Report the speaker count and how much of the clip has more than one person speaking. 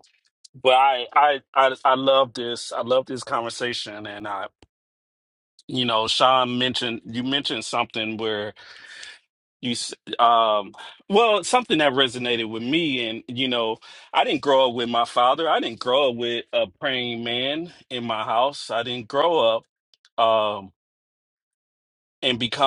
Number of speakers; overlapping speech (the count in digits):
1, no overlap